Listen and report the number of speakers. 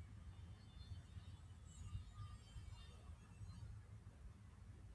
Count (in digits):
0